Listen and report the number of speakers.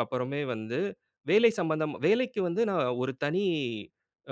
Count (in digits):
1